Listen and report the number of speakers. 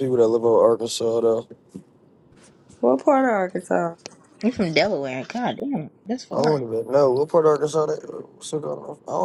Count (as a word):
three